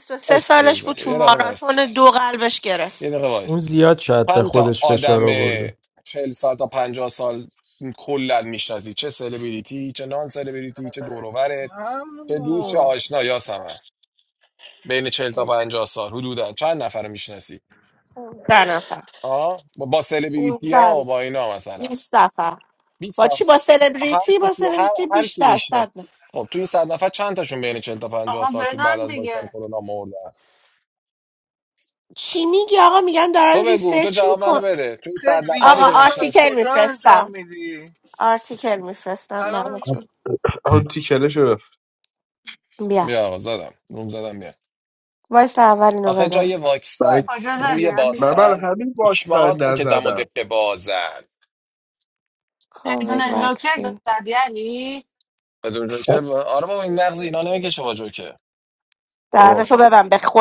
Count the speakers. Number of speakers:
six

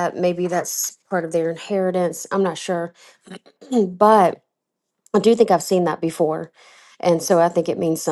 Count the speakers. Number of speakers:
one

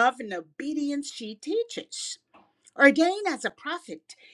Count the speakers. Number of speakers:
one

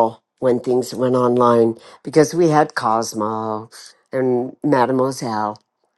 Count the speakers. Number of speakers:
one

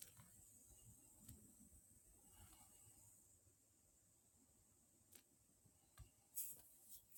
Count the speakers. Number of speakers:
zero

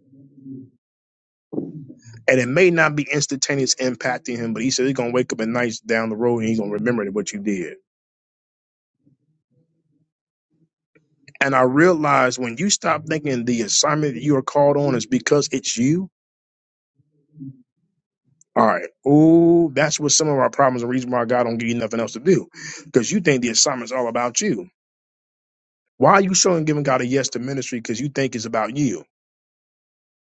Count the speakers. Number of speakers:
one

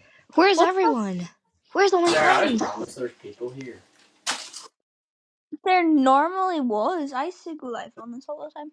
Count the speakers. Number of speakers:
three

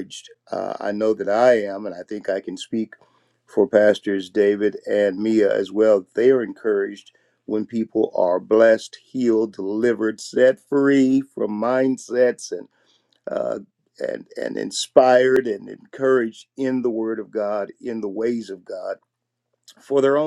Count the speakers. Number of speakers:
one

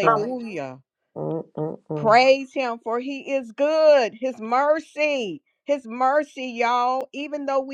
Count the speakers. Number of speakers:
two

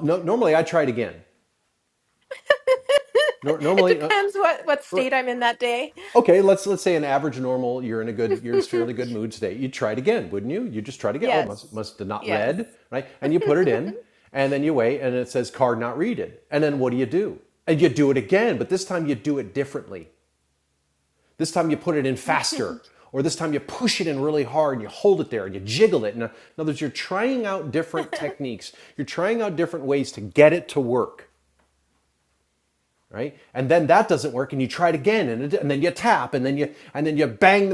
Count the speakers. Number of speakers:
two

